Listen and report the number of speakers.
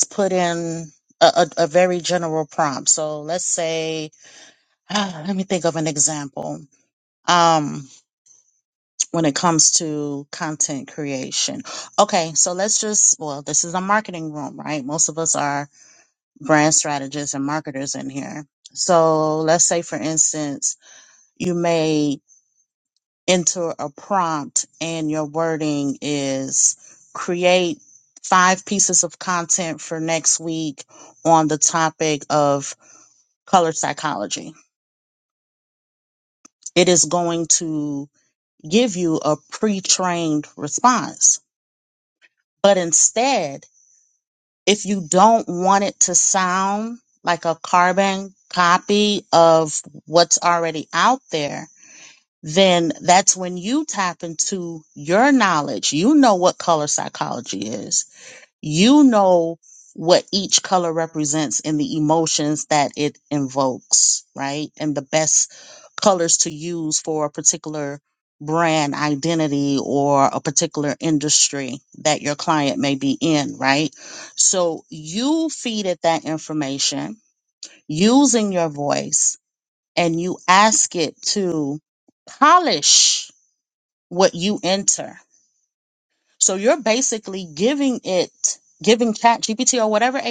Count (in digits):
1